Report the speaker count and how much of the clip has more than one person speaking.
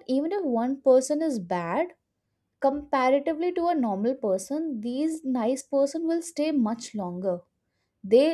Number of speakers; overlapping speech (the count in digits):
1, no overlap